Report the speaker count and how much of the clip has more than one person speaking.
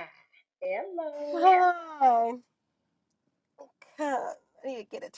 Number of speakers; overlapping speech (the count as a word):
two, about 4%